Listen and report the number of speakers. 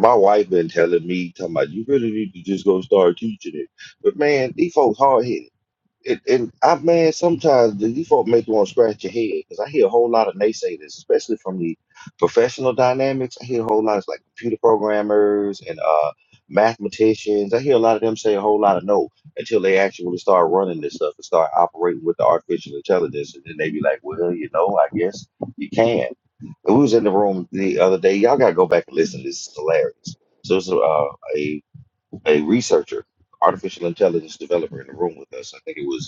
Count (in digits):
1